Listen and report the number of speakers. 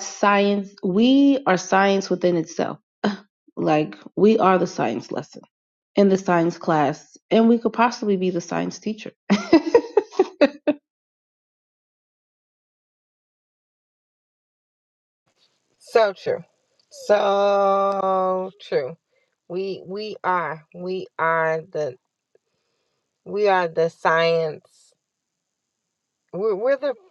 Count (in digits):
2